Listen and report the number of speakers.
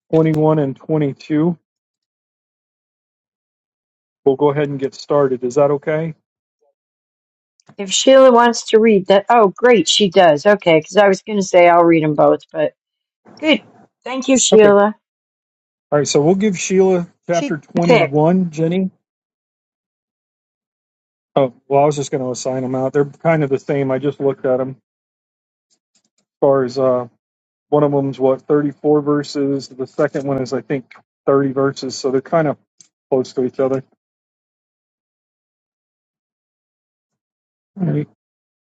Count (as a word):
two